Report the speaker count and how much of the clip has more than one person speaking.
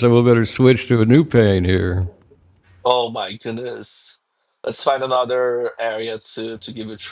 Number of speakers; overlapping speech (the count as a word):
two, no overlap